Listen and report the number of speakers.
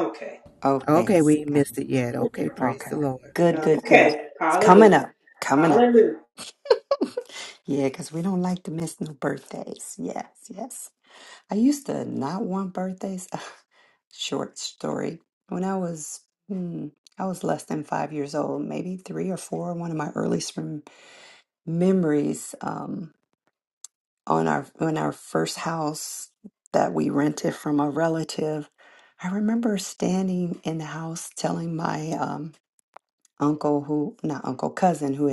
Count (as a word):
three